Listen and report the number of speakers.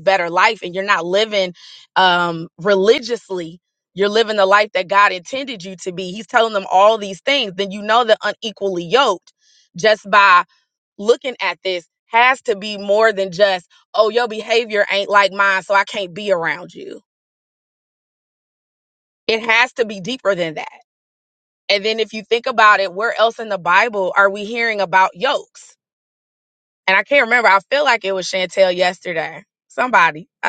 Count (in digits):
1